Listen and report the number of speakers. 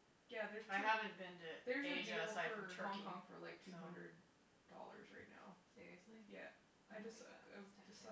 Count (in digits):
3